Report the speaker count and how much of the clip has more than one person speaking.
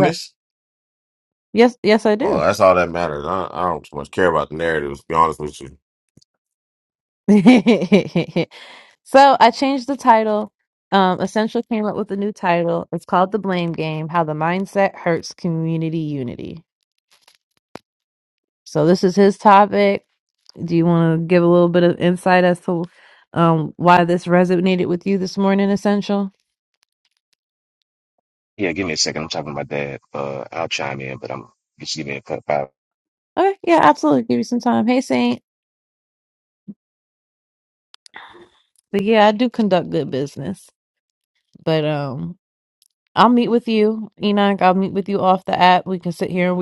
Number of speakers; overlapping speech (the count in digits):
3, about 1%